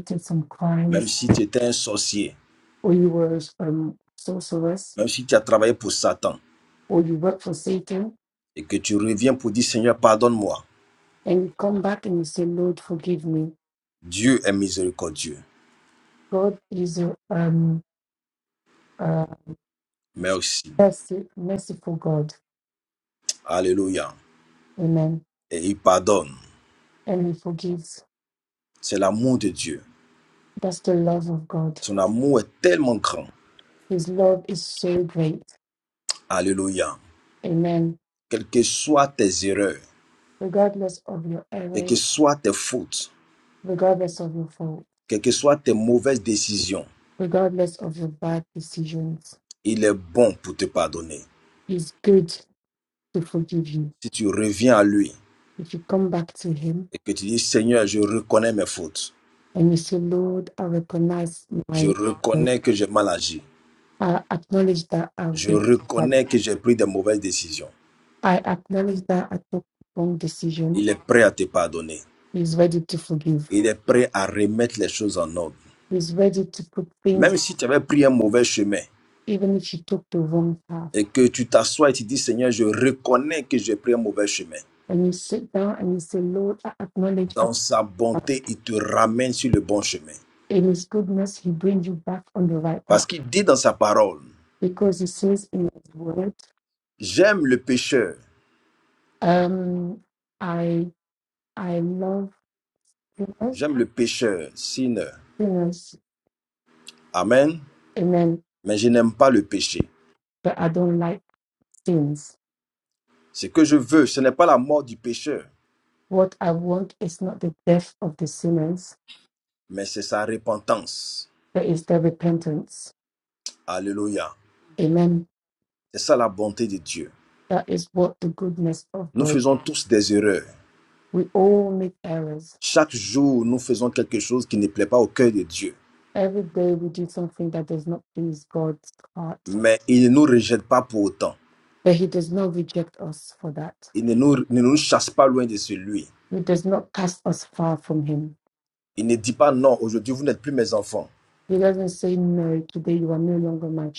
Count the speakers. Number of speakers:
2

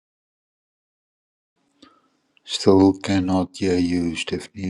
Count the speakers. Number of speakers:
1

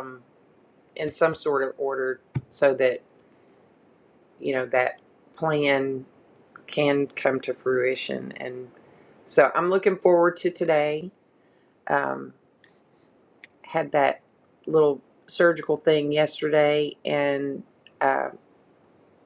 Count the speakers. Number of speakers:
1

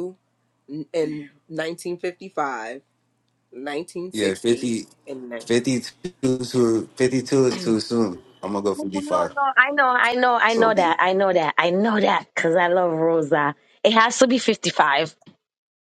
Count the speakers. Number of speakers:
3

